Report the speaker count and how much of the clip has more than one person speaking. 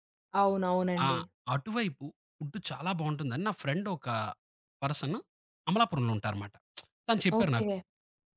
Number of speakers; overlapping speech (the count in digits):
2, about 5%